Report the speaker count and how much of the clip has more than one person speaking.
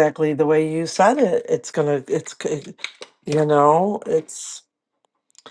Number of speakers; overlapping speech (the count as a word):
one, no overlap